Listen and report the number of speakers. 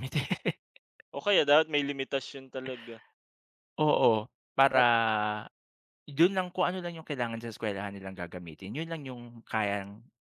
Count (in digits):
2